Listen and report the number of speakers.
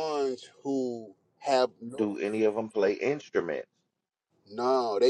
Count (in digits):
2